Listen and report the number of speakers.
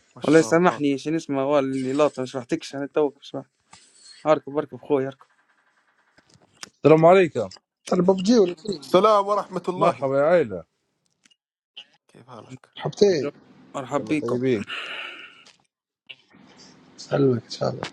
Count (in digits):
4